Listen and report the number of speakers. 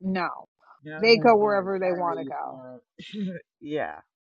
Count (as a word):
two